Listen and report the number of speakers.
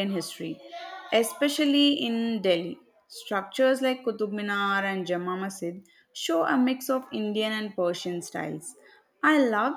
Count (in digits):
1